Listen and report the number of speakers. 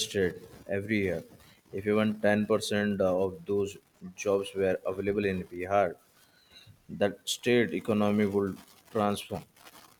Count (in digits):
1